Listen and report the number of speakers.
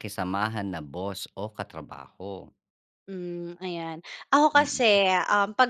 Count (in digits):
2